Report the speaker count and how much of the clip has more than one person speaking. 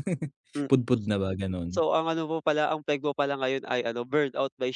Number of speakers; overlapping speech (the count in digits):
2, about 7%